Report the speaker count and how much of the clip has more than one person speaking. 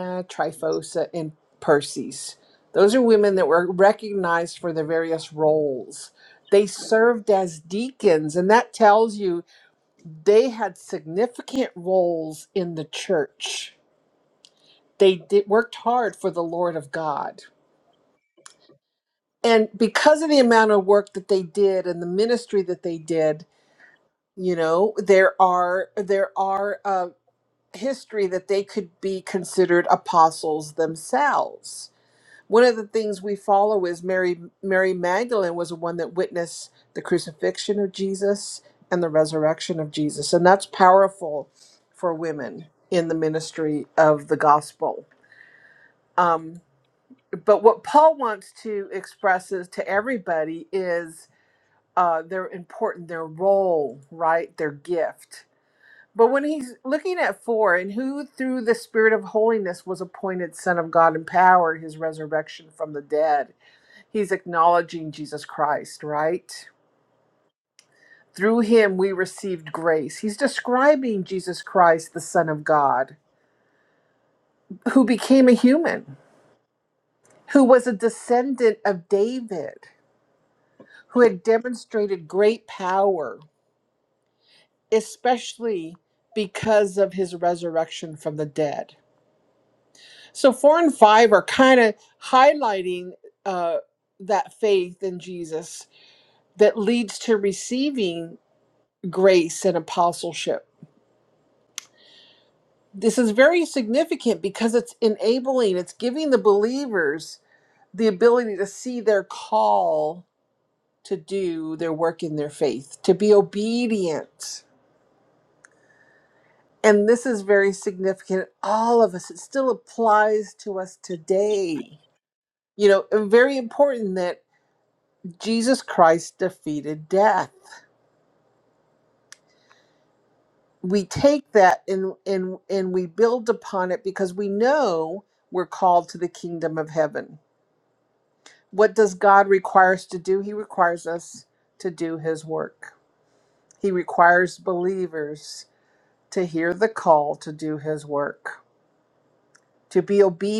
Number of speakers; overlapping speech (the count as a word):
one, no overlap